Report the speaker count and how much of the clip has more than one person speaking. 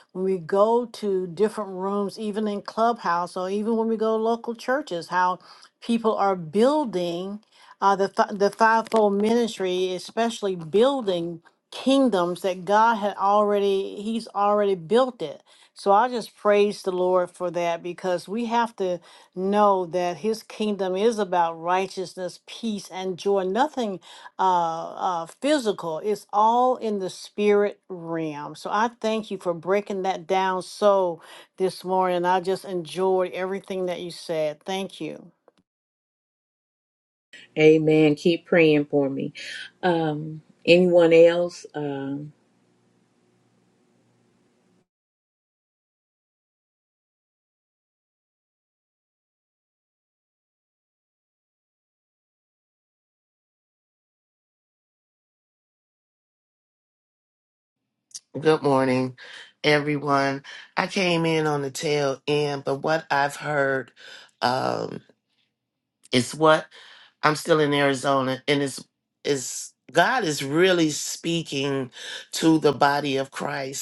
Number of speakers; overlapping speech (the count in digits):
3, no overlap